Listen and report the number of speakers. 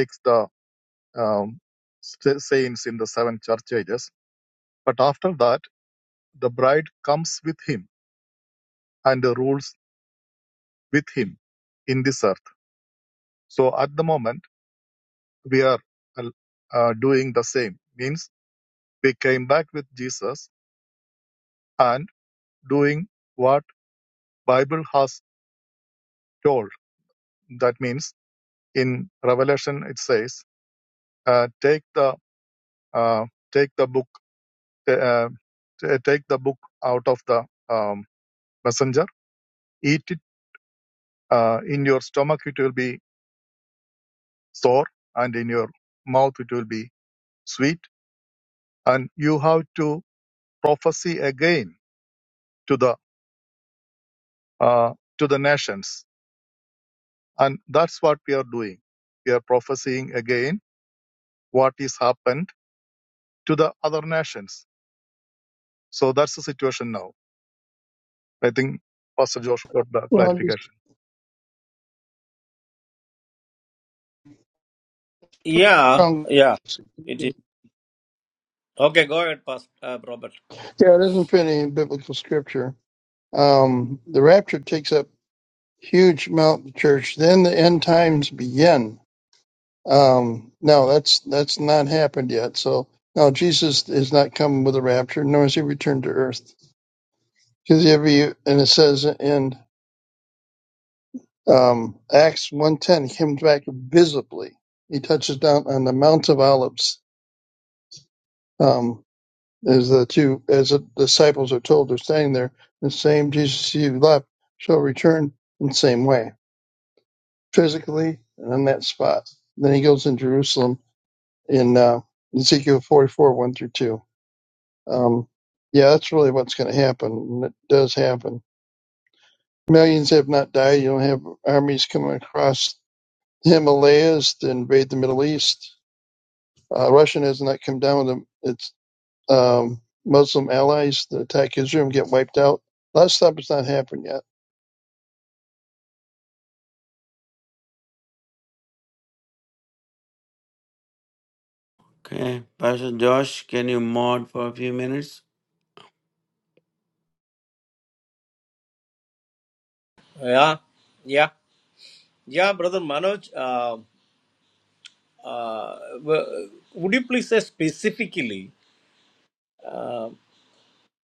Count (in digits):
4